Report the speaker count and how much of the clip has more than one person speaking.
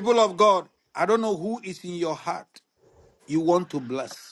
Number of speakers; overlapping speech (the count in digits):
1, no overlap